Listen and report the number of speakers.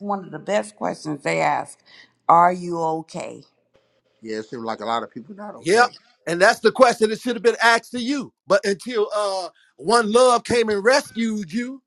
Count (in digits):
3